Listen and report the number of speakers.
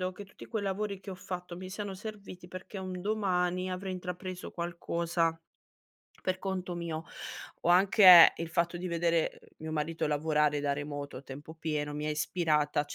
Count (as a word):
one